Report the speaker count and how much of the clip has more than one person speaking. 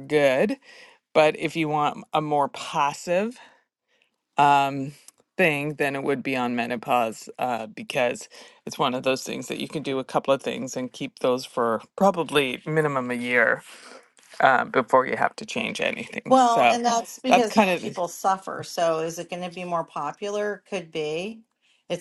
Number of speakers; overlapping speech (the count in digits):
2, about 5%